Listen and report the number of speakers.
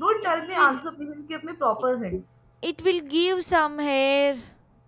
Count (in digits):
2